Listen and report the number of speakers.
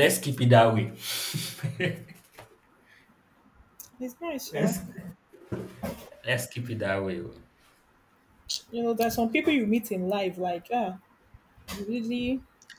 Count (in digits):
2